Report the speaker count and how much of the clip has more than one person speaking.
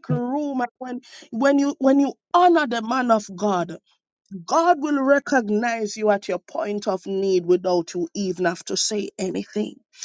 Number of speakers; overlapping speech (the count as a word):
one, no overlap